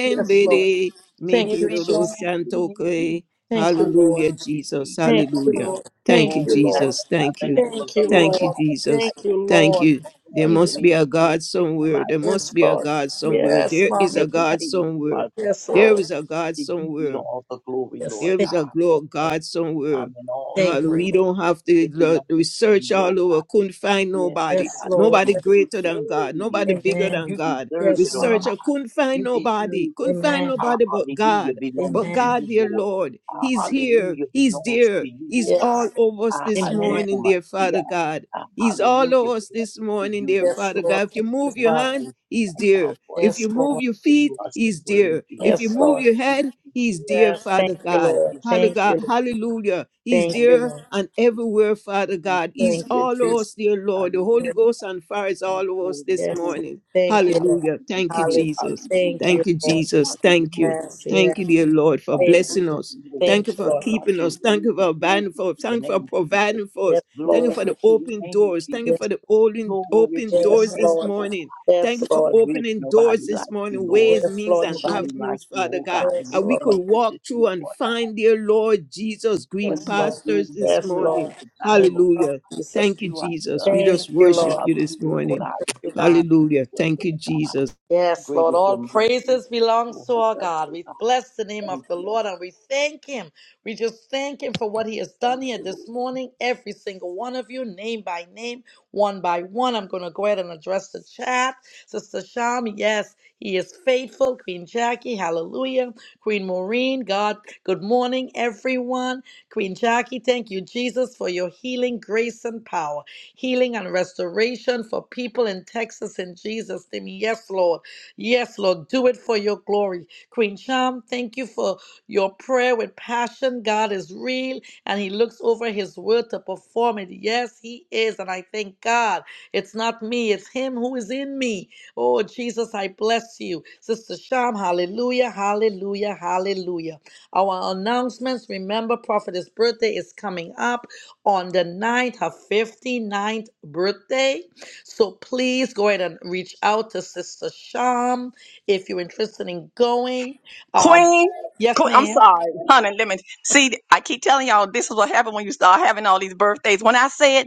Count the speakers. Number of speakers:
four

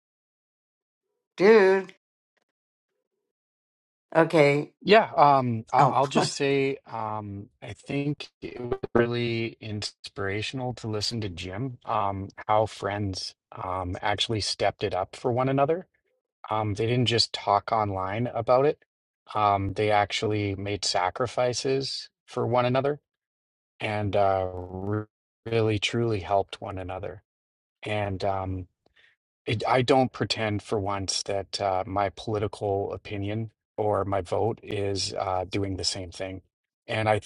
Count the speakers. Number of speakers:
two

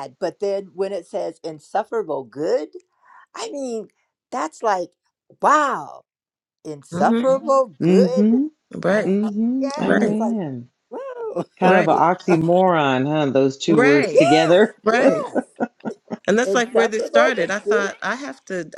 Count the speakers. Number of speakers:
three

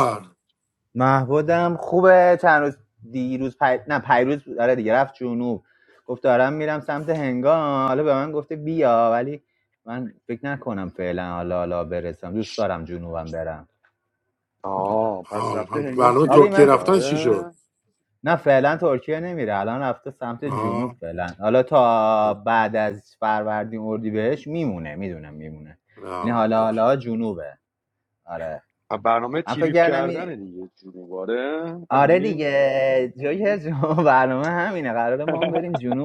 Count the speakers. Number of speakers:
three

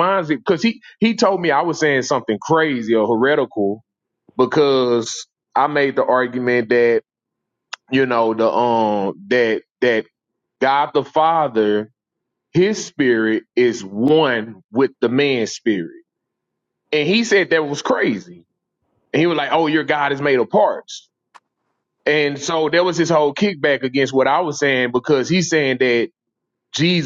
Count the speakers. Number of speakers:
one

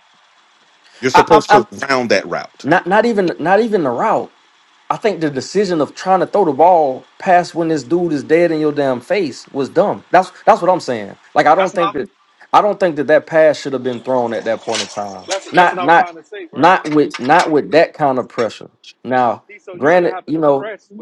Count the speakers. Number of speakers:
three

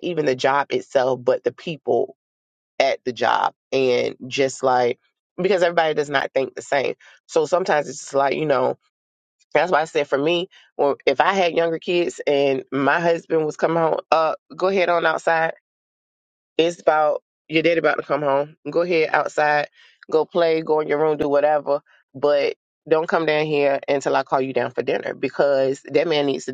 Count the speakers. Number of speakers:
one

